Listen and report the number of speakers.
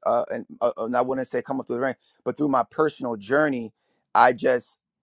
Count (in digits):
1